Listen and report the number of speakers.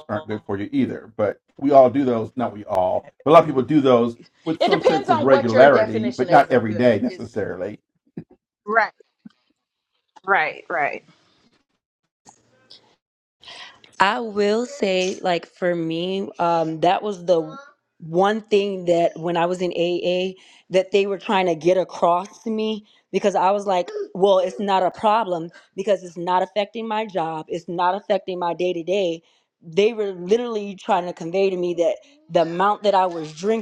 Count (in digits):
3